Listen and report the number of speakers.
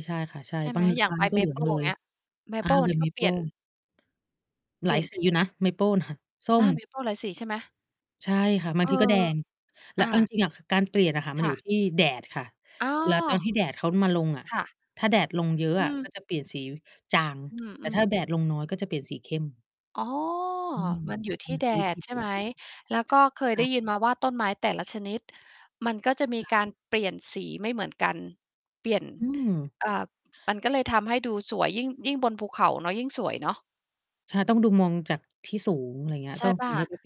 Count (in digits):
2